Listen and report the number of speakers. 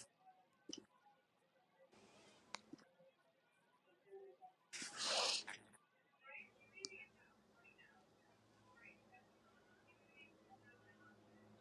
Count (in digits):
0